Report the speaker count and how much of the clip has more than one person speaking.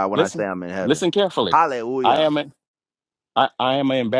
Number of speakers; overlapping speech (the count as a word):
two, about 18%